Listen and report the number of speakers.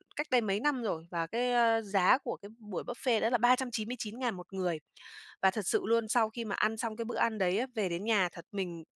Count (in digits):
1